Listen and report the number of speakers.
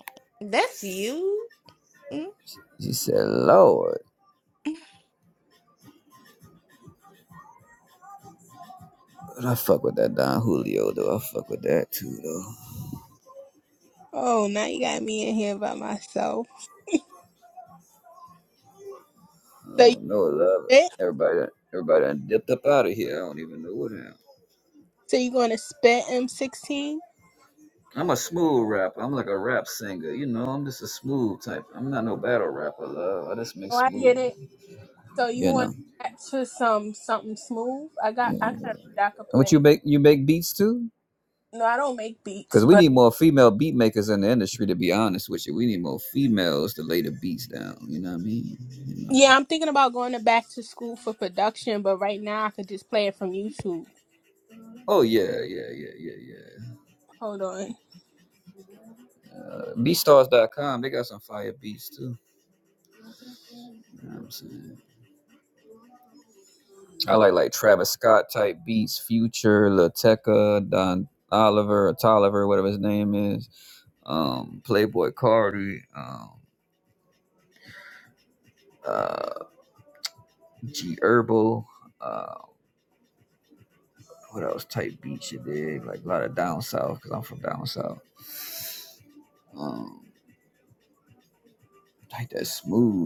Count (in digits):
3